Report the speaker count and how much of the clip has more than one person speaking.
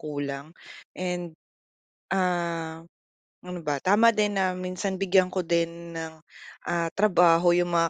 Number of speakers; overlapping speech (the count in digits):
1, no overlap